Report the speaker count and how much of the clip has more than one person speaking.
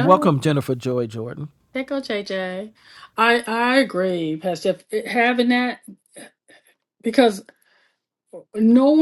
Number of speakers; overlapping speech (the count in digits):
2, about 3%